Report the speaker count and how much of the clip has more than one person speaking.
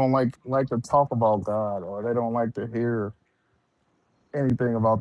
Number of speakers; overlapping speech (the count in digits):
1, no overlap